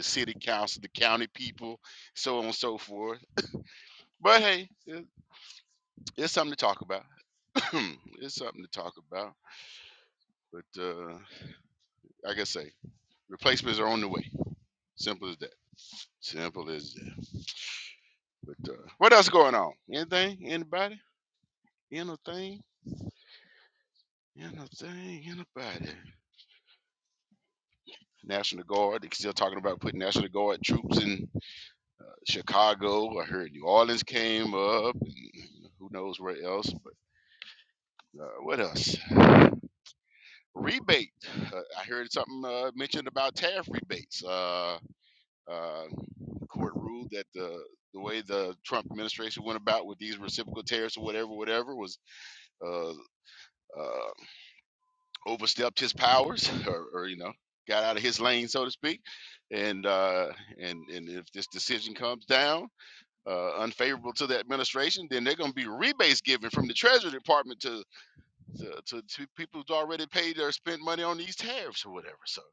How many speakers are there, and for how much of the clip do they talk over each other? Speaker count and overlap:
1, no overlap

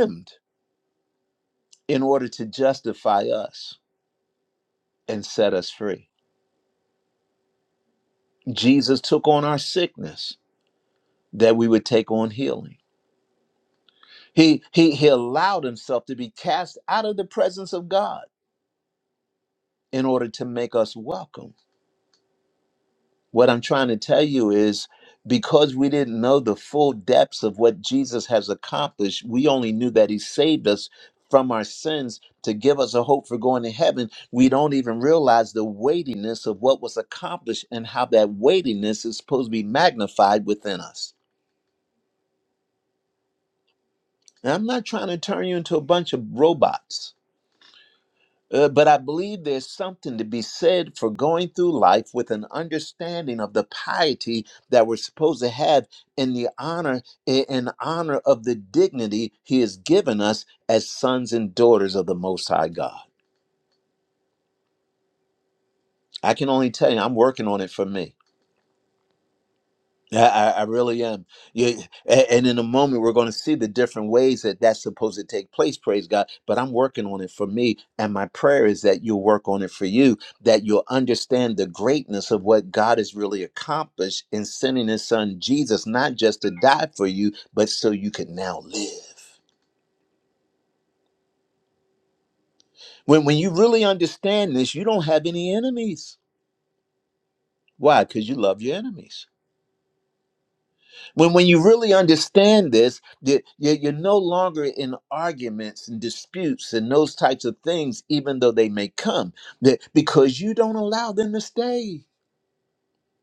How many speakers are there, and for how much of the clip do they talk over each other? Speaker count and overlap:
1, no overlap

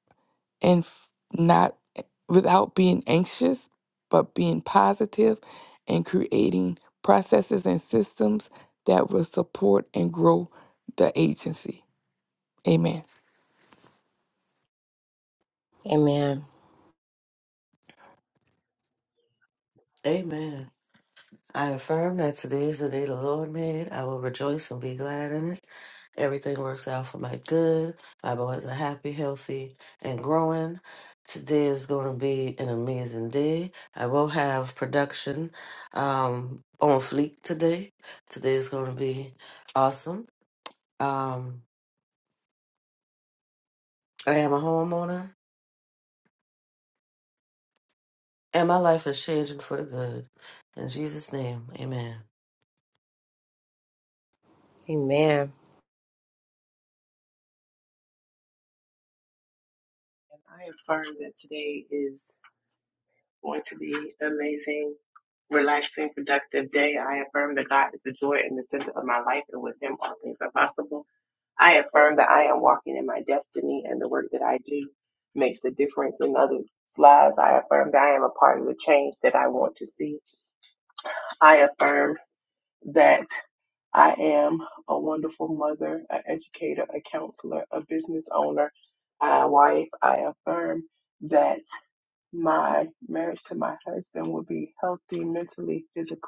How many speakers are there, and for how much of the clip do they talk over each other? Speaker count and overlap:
4, no overlap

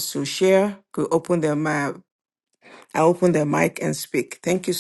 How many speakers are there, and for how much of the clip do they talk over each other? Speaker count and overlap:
1, no overlap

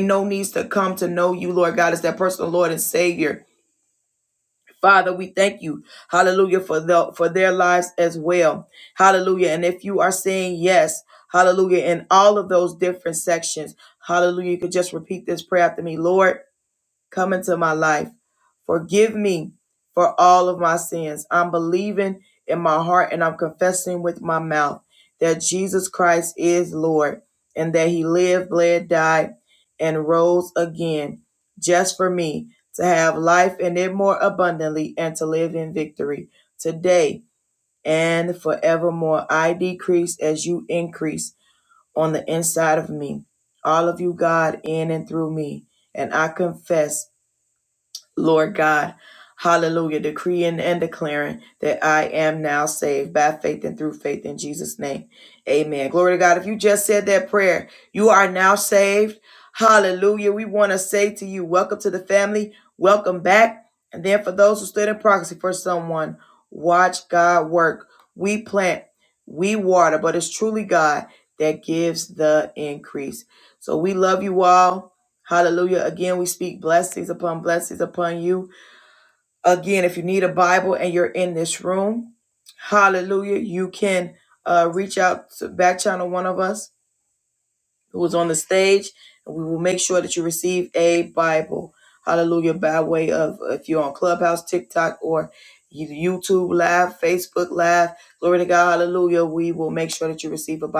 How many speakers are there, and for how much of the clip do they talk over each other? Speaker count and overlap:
1, no overlap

